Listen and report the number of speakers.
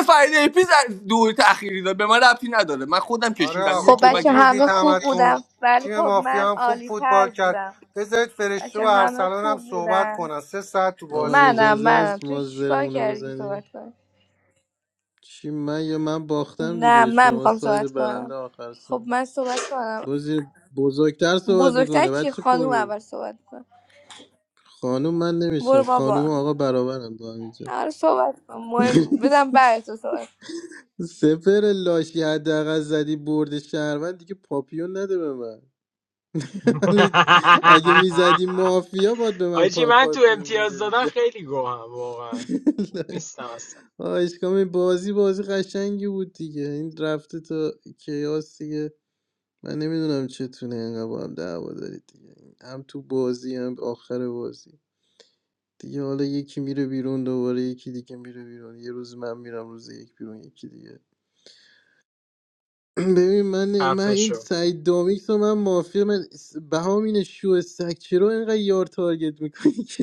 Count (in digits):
5